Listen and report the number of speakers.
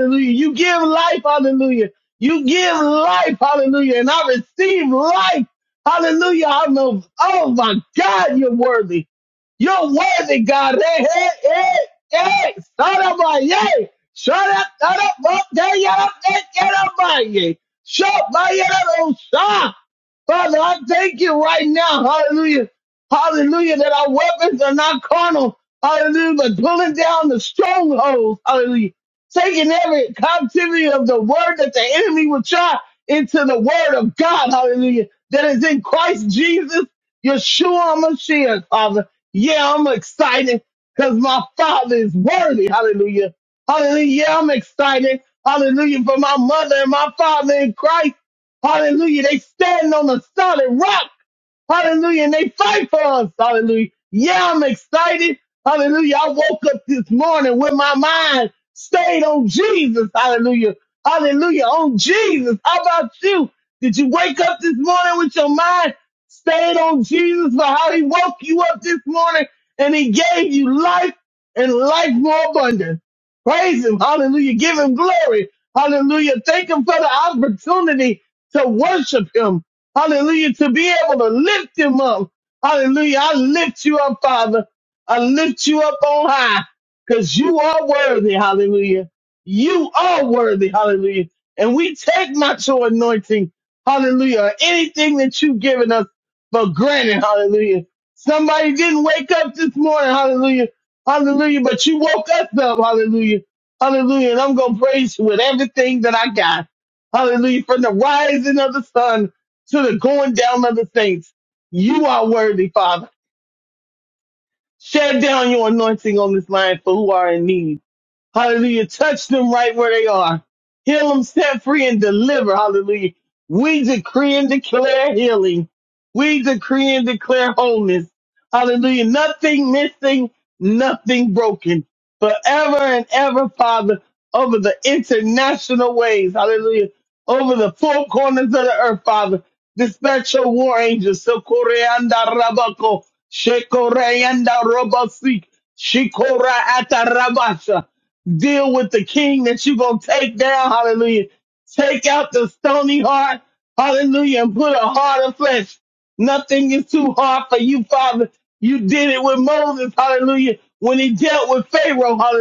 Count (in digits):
1